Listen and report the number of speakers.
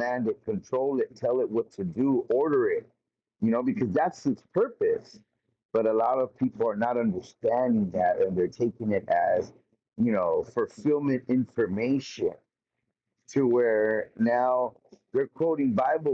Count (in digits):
1